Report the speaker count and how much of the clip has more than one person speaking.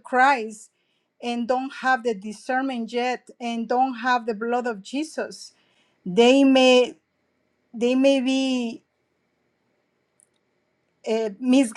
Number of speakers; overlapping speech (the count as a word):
one, no overlap